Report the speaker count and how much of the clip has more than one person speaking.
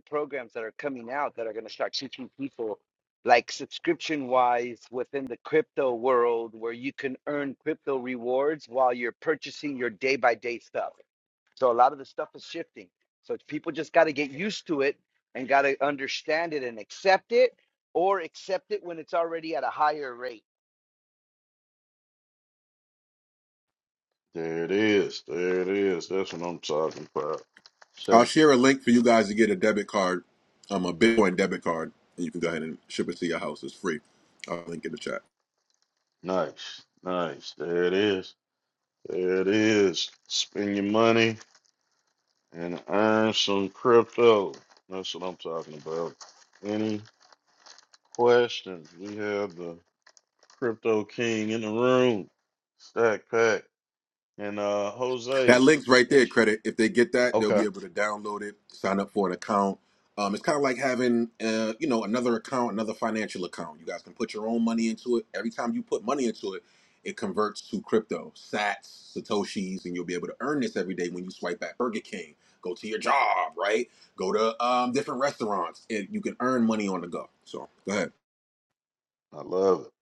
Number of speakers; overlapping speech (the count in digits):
3, about 1%